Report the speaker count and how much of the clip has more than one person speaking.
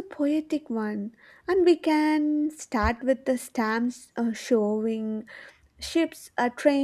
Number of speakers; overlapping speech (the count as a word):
one, no overlap